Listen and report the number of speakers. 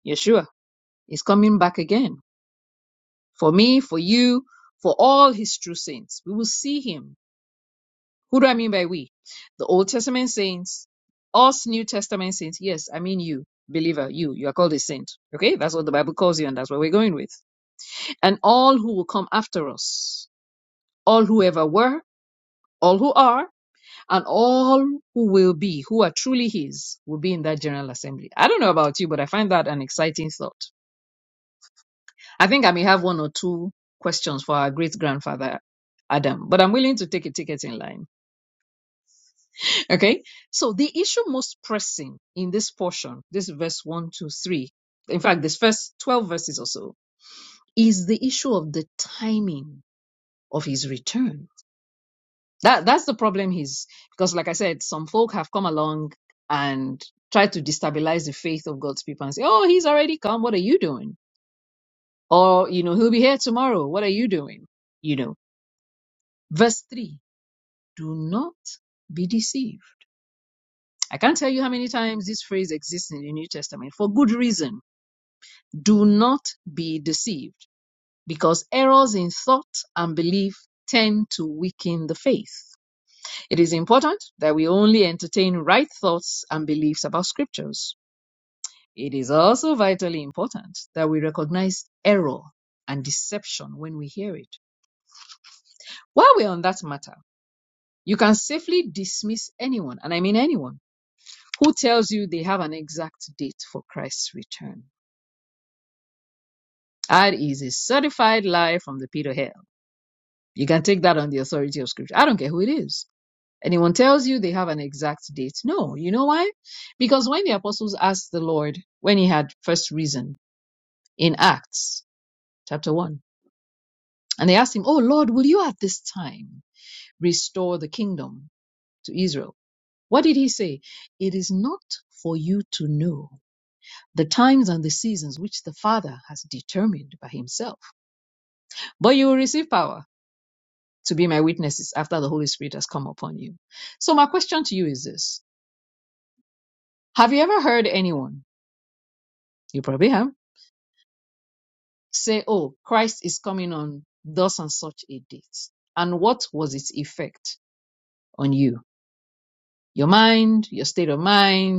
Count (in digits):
1